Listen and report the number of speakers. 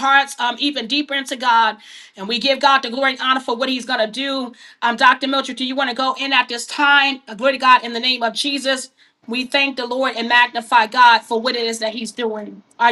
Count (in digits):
1